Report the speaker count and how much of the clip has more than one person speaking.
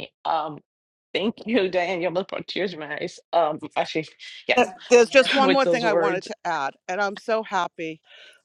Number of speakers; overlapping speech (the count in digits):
2, about 11%